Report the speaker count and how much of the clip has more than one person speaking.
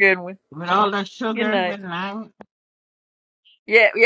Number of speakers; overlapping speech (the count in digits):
2, about 10%